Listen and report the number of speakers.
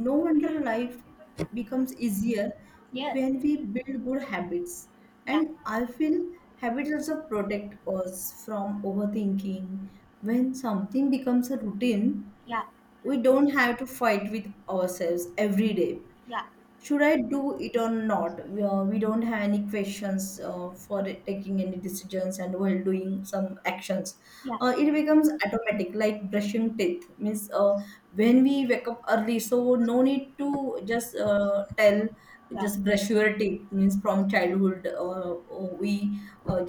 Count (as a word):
two